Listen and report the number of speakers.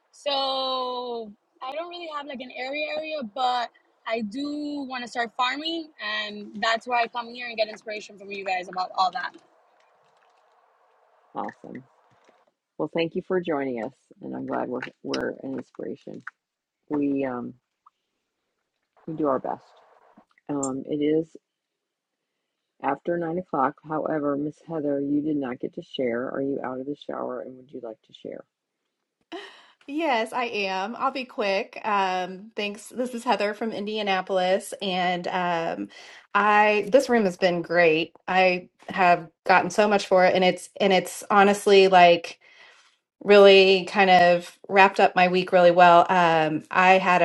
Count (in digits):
3